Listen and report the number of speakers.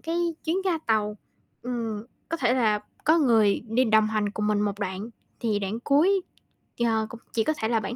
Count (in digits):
1